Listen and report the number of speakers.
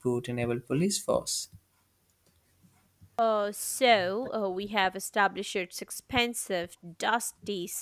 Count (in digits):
2